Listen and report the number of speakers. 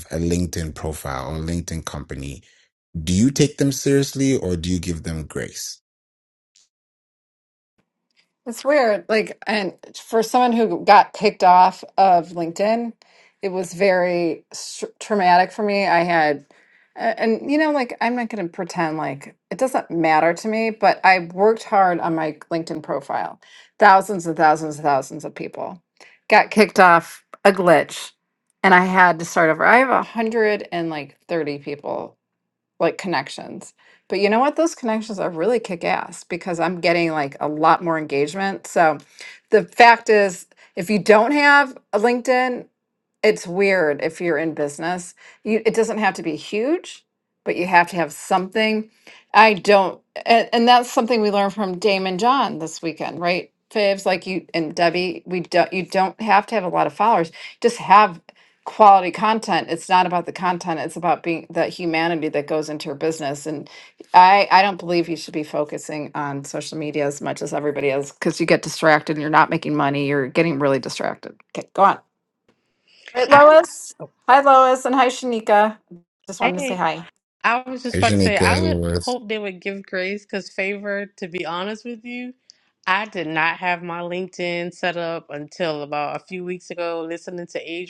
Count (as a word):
three